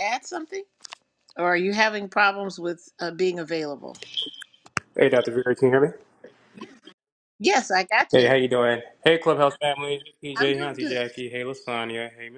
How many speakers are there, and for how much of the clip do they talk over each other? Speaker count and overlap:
two, about 7%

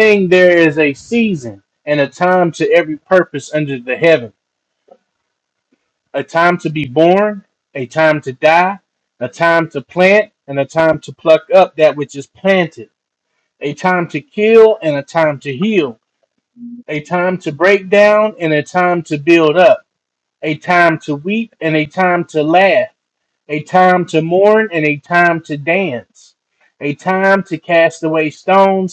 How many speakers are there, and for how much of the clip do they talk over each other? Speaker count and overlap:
one, no overlap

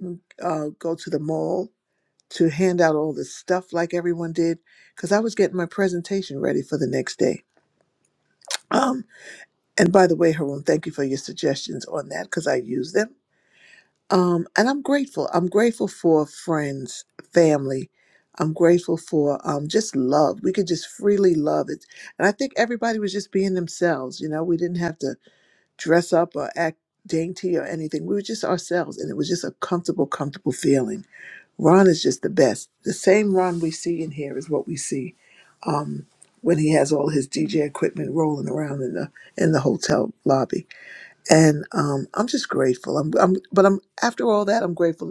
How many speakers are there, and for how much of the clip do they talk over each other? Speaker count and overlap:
one, no overlap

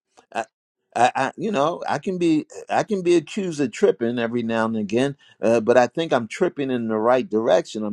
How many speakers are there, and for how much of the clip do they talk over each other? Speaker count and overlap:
one, no overlap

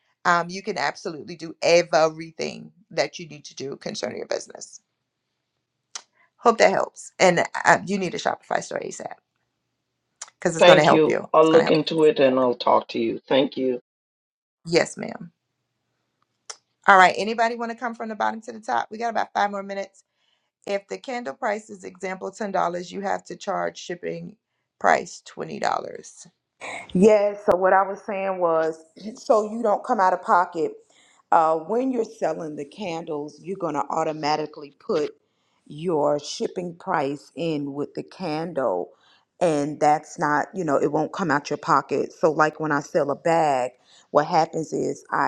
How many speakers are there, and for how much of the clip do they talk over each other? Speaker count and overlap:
three, about 3%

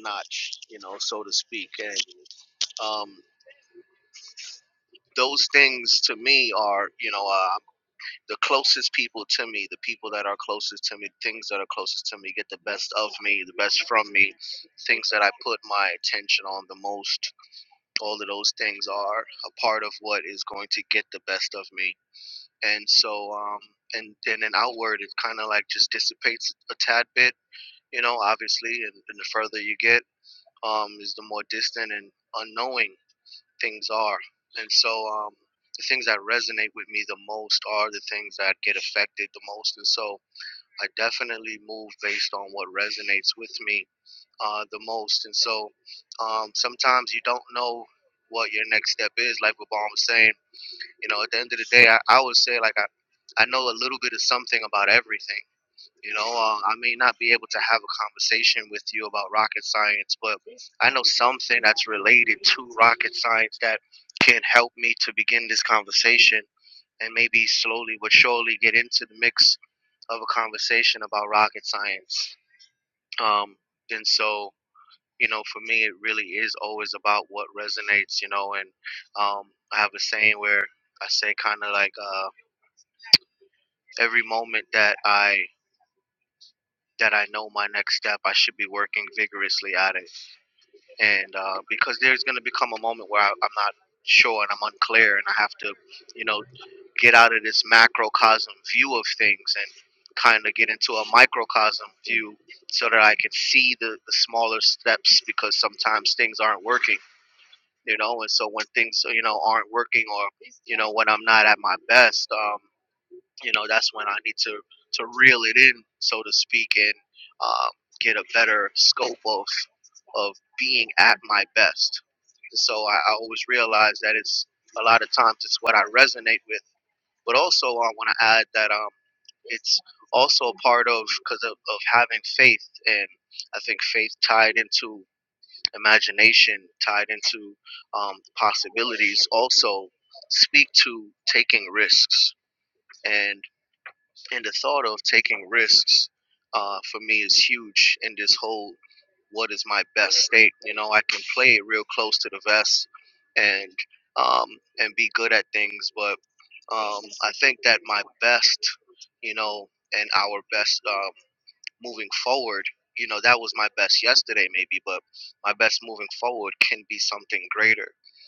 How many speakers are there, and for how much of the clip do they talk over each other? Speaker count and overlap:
one, no overlap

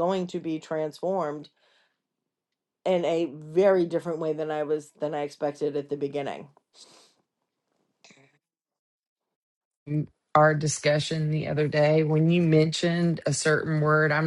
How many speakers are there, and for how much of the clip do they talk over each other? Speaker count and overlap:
two, no overlap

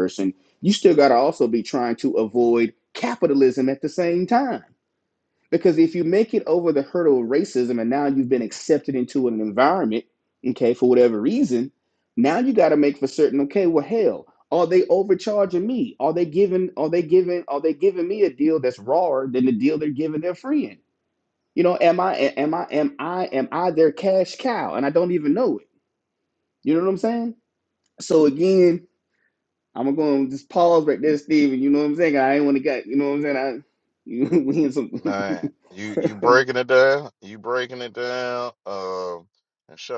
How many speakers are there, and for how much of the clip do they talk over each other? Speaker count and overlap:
two, no overlap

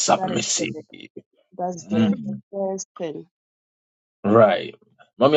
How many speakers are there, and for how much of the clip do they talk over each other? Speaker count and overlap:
two, about 15%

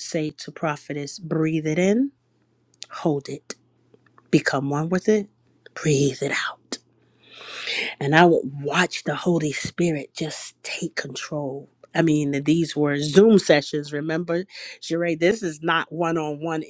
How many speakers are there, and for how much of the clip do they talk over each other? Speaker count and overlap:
one, no overlap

